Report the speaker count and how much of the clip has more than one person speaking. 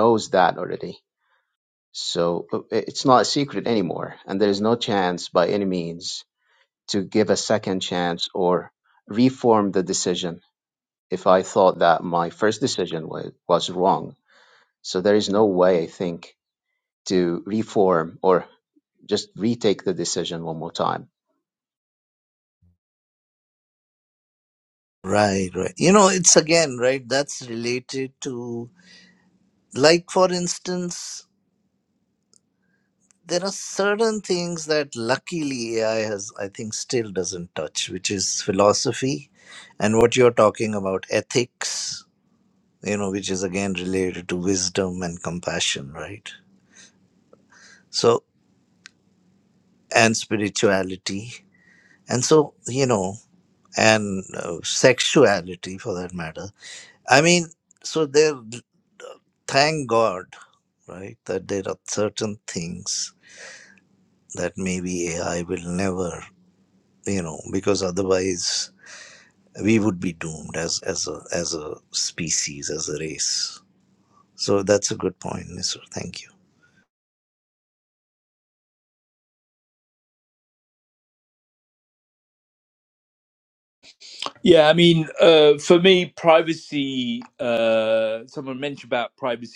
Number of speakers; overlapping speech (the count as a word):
three, no overlap